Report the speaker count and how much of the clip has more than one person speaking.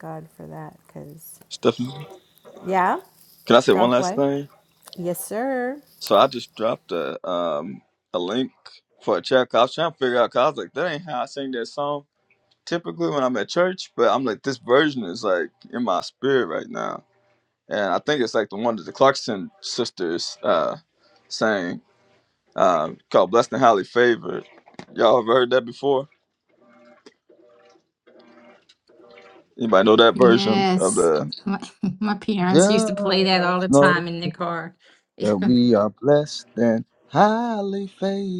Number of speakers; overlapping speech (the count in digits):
3, about 6%